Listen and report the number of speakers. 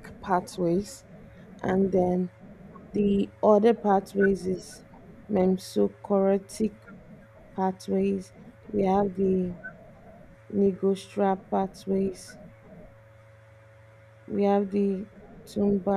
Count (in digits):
1